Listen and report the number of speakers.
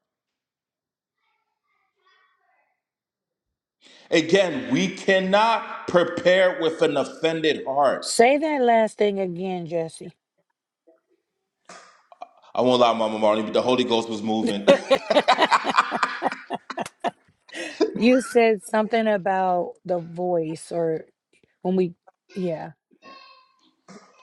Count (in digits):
2